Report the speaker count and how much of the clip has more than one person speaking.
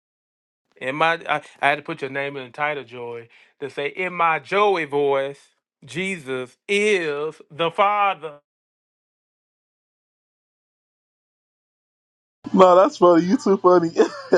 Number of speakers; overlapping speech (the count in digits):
2, no overlap